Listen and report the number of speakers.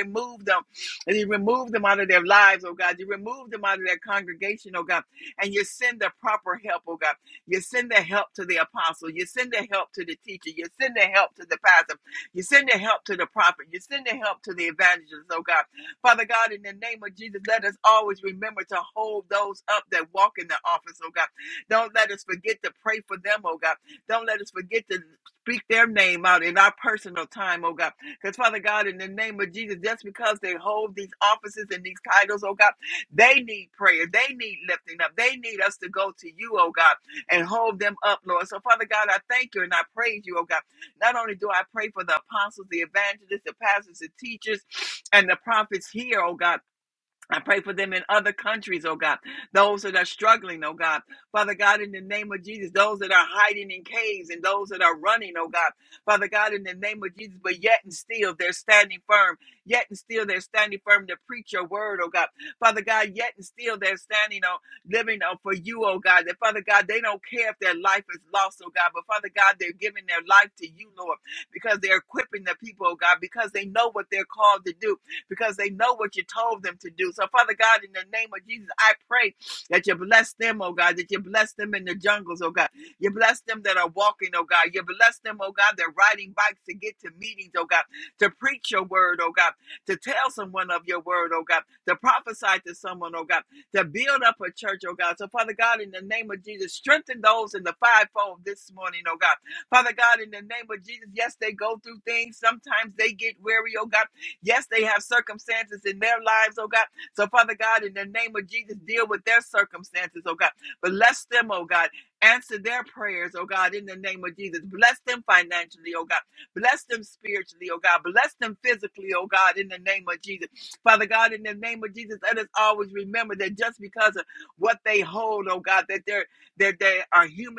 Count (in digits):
1